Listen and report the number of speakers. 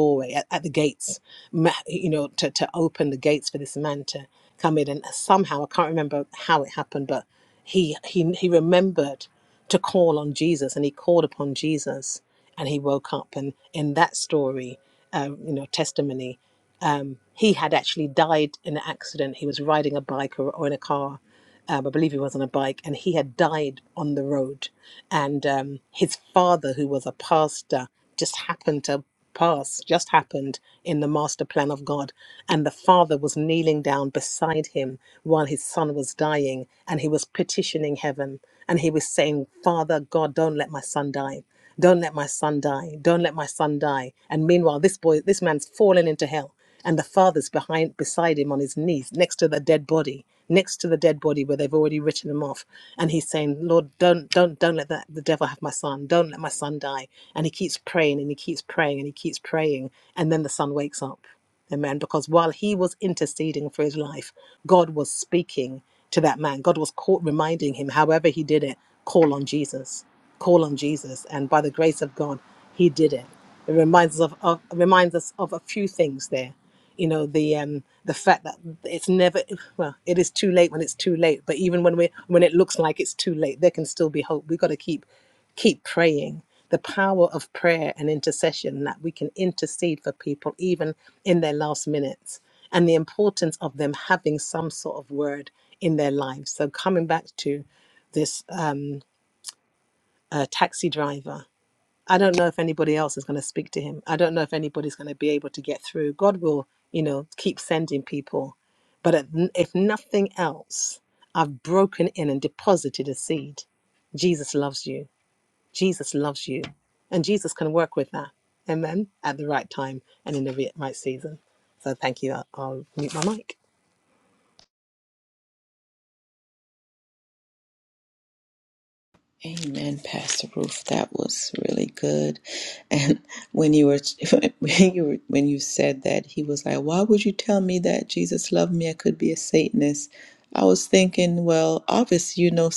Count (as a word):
two